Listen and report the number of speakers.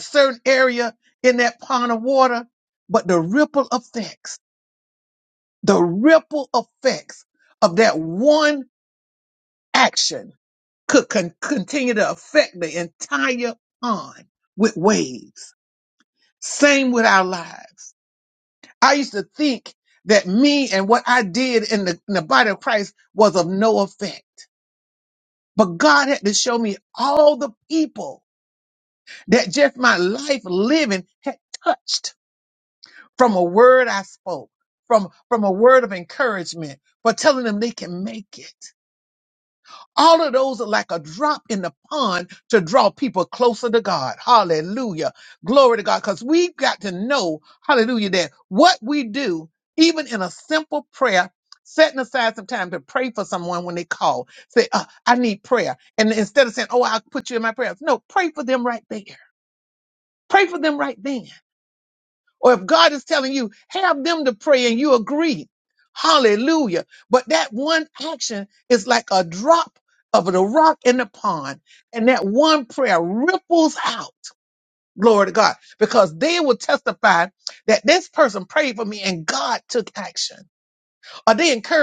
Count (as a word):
one